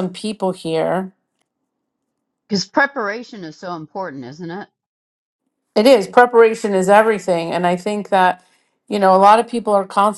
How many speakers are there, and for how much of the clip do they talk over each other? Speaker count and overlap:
2, no overlap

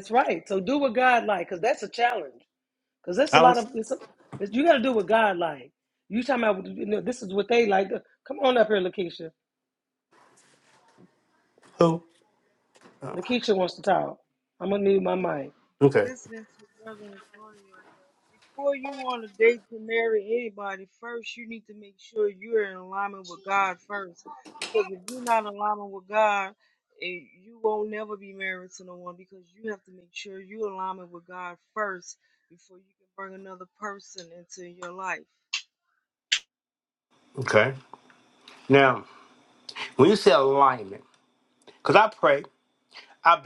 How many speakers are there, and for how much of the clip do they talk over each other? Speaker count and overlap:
3, about 1%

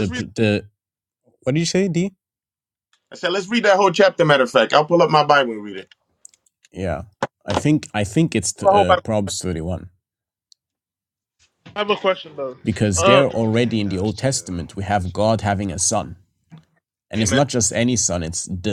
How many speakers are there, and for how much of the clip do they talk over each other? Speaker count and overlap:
3, about 7%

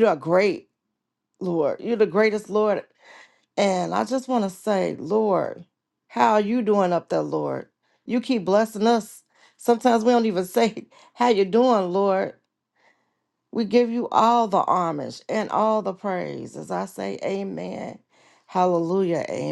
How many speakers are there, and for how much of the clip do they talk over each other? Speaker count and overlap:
1, no overlap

